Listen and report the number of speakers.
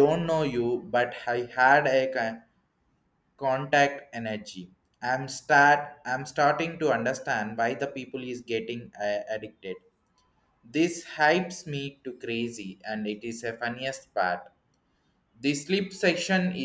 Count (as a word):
one